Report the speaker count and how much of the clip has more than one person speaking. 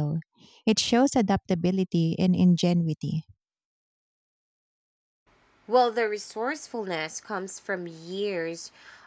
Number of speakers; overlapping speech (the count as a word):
two, no overlap